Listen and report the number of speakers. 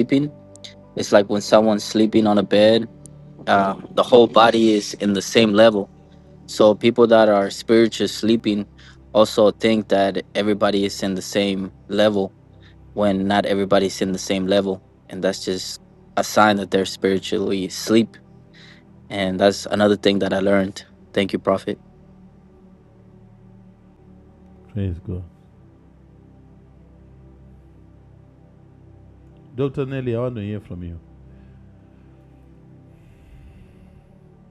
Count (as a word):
two